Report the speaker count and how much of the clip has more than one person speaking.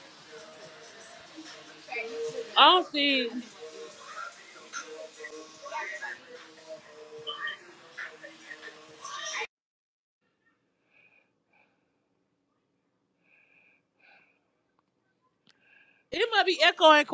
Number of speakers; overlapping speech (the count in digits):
1, no overlap